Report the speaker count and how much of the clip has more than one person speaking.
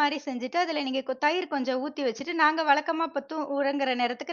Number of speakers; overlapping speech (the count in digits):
1, no overlap